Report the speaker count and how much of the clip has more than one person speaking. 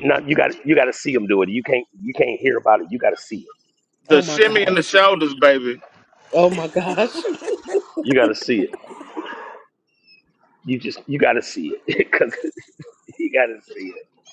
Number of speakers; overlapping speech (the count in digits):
3, about 5%